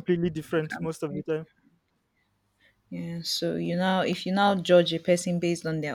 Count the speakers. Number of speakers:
2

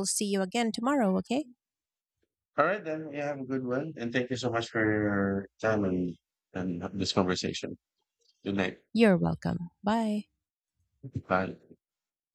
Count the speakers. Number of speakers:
2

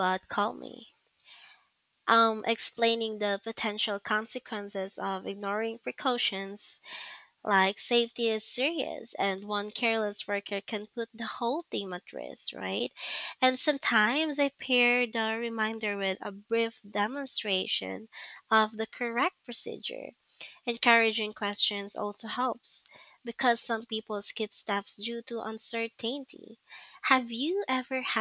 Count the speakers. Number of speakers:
1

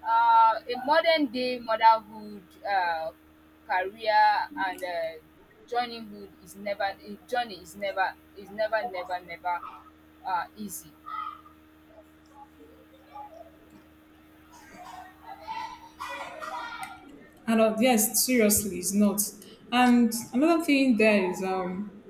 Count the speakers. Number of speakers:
2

